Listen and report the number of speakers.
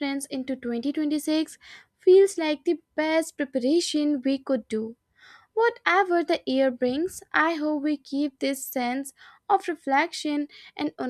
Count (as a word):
one